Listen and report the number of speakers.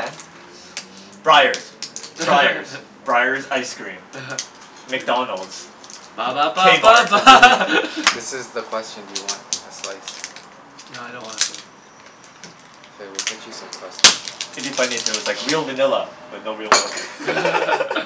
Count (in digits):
3